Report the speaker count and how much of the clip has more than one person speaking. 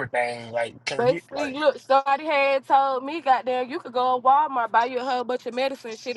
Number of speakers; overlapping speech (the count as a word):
two, about 8%